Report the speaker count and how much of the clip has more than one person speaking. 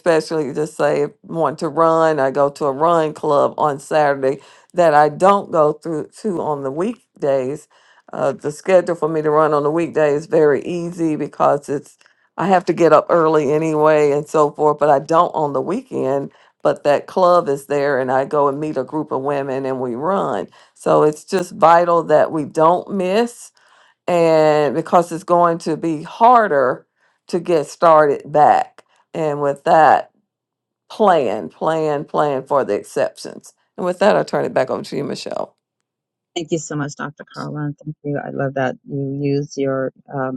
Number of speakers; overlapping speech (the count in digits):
2, no overlap